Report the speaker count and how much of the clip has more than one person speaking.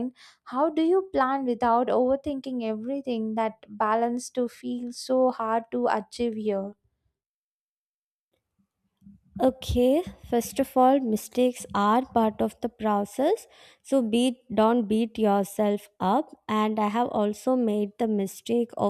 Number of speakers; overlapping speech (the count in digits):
2, no overlap